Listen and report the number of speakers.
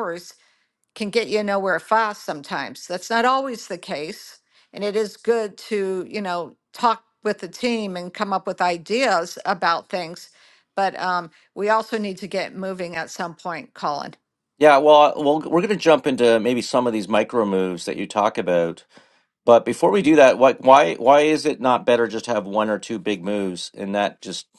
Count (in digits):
2